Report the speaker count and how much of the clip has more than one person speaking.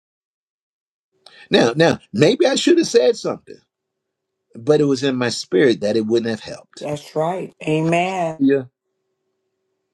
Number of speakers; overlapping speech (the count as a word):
two, about 1%